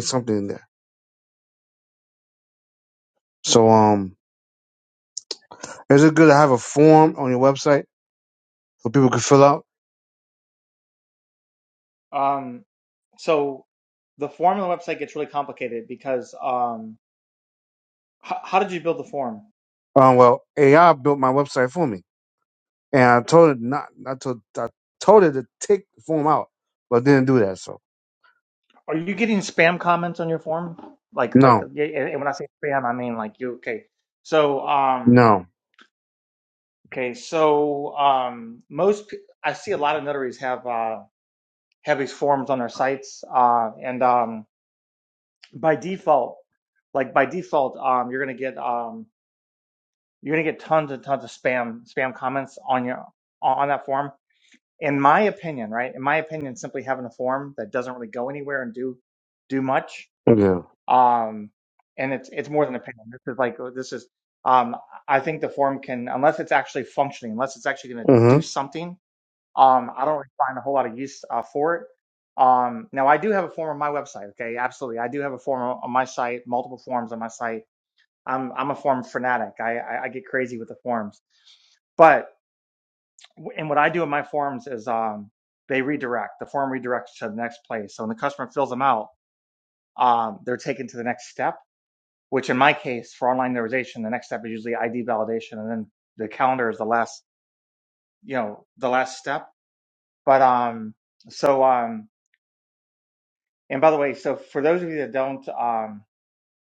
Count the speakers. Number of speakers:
two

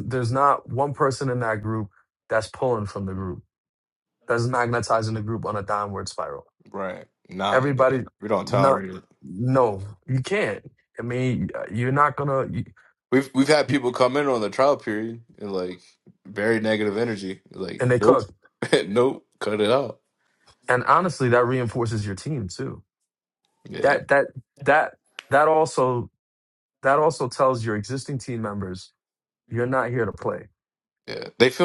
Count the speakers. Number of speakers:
two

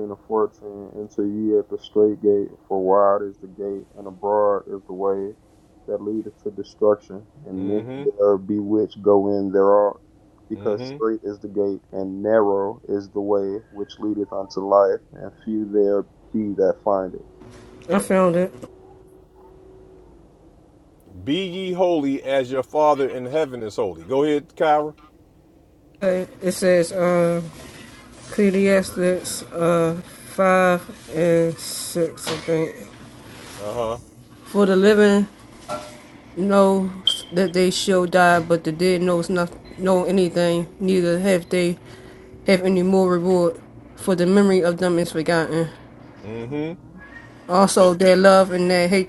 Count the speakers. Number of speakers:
three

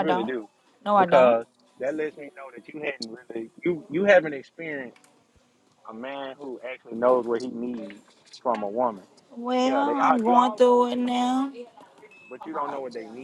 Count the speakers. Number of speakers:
two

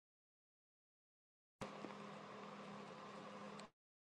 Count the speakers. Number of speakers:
zero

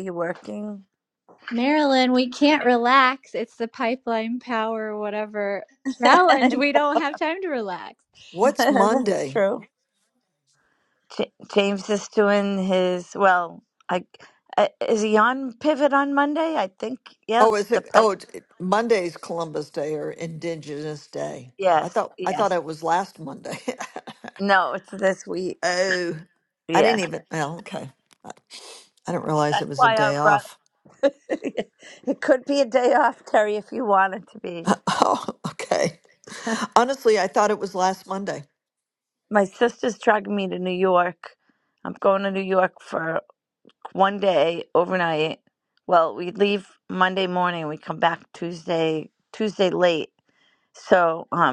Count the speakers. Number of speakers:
three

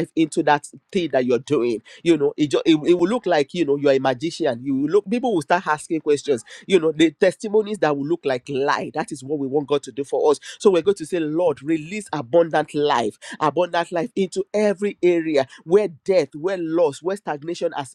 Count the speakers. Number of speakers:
one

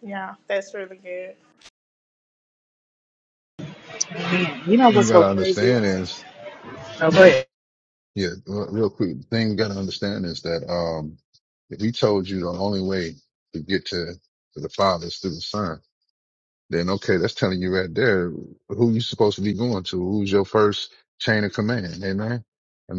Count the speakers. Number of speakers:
three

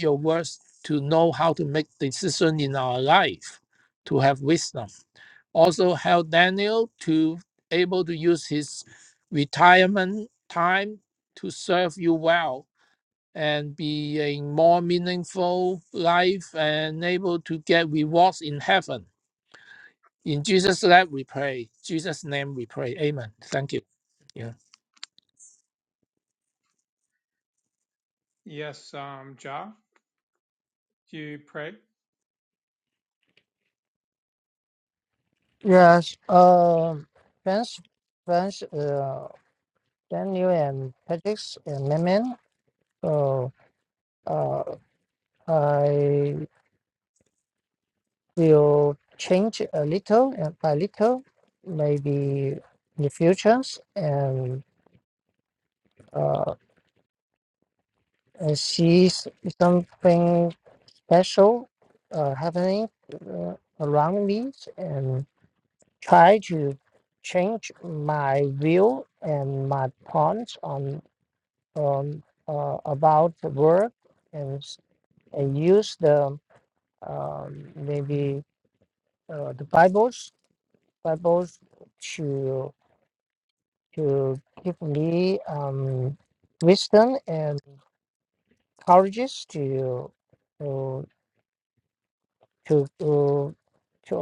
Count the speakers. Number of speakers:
three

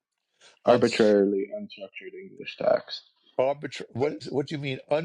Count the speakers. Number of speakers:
two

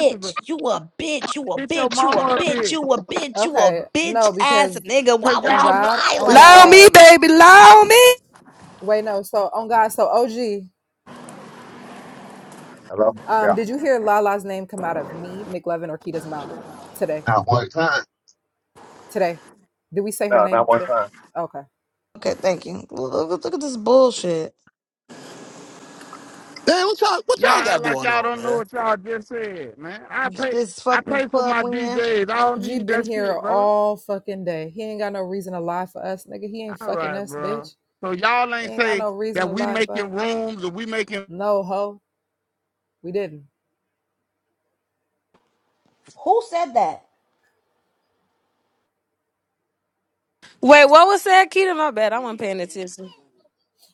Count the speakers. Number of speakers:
seven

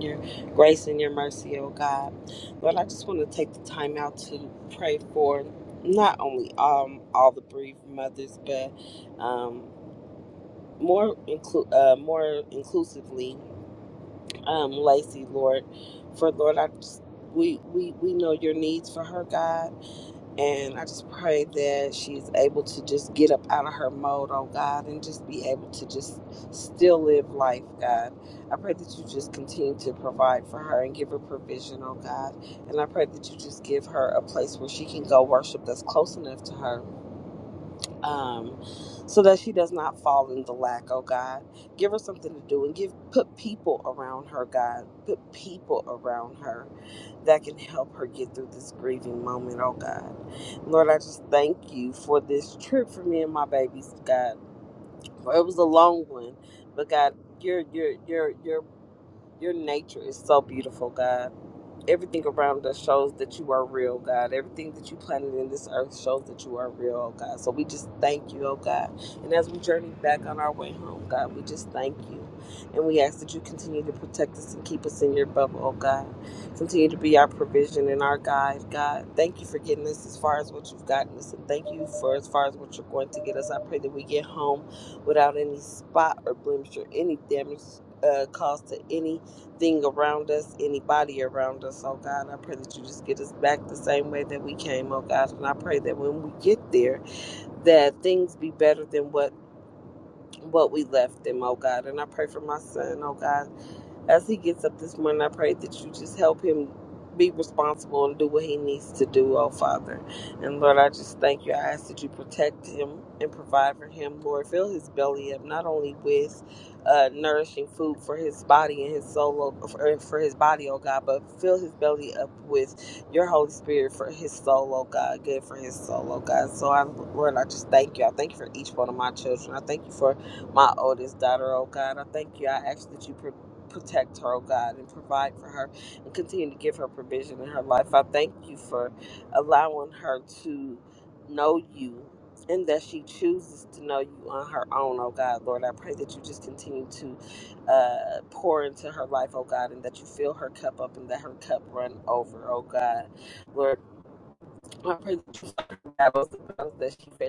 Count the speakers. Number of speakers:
one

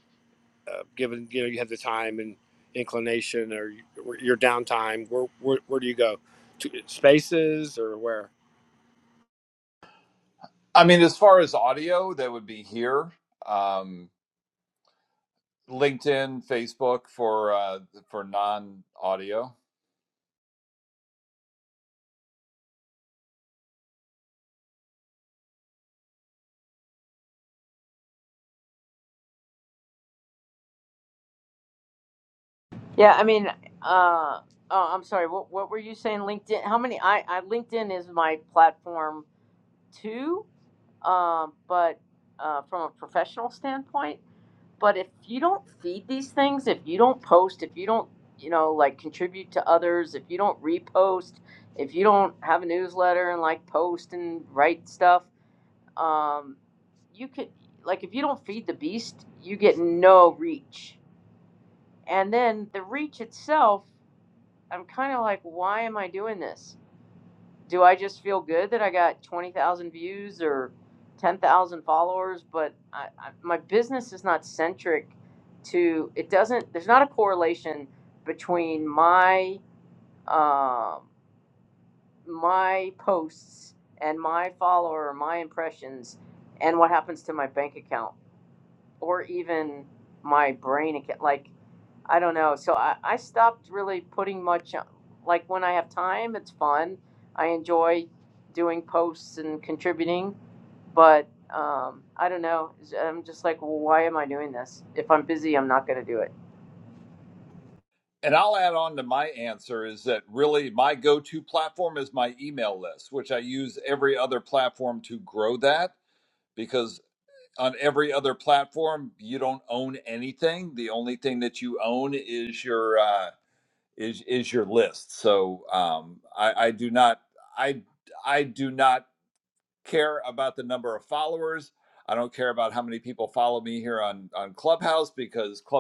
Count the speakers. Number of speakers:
three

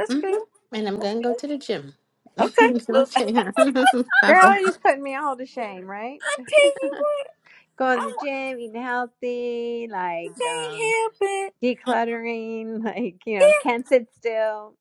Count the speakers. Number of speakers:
three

